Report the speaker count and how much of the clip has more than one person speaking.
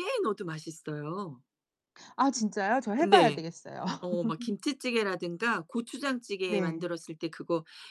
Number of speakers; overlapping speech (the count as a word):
two, about 9%